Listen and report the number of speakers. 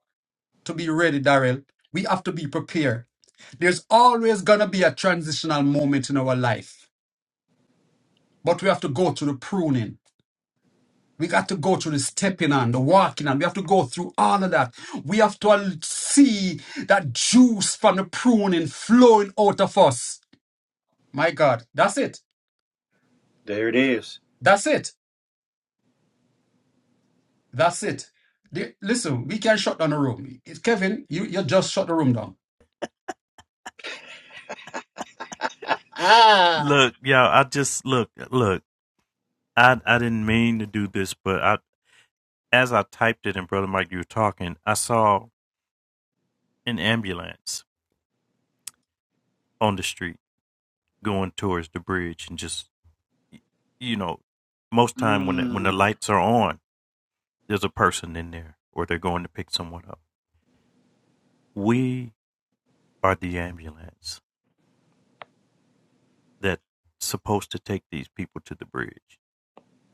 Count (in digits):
3